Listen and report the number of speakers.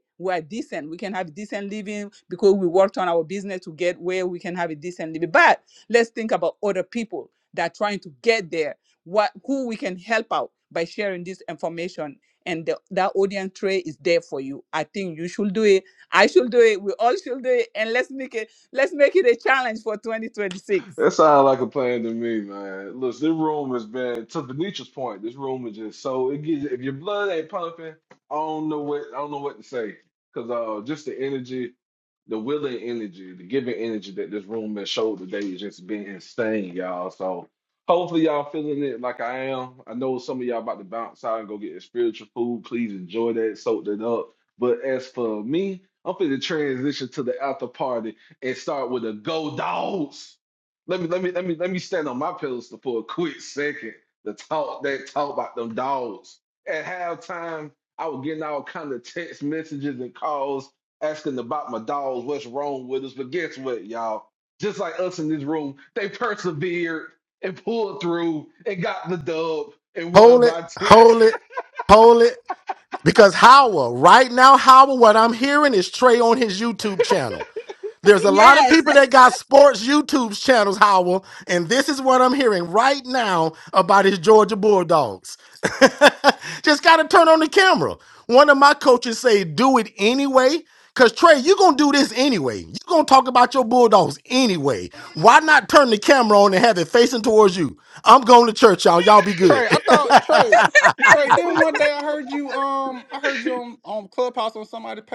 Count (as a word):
four